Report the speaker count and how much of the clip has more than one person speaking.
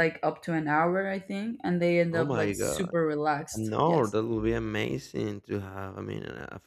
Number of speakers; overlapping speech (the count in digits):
2, about 15%